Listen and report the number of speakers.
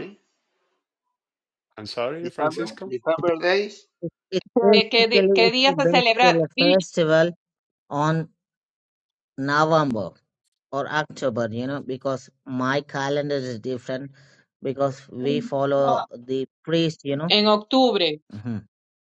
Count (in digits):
4